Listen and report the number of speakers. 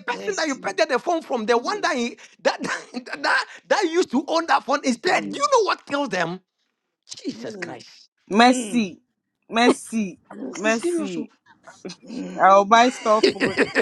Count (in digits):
3